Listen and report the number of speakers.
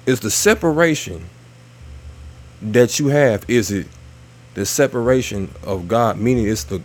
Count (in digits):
1